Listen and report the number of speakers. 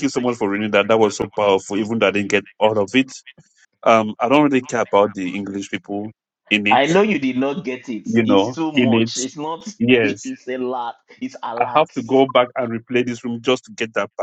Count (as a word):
two